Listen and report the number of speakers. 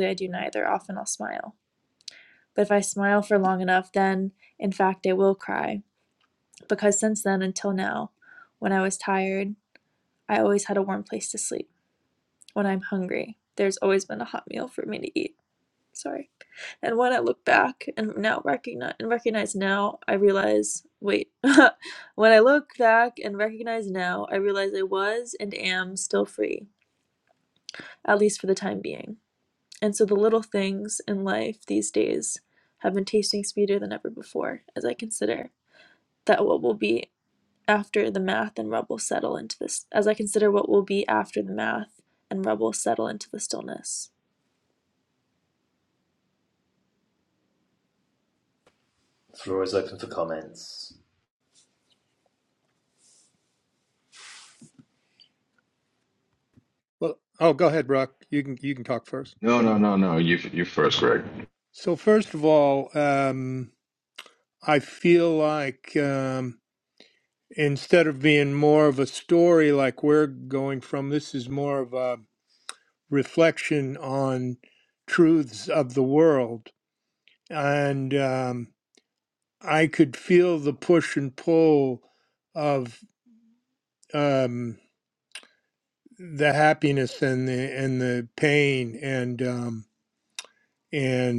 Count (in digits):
4